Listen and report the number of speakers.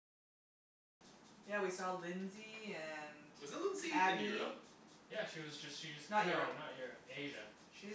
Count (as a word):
three